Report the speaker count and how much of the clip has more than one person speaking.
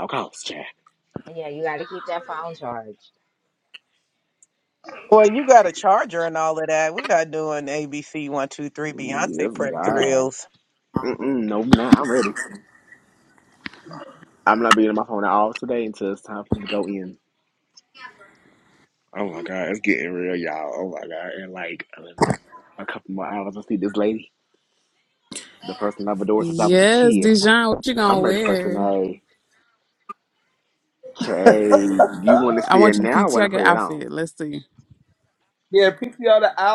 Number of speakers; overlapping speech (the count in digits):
5, about 13%